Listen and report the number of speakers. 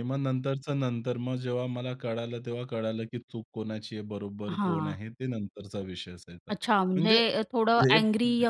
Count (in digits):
2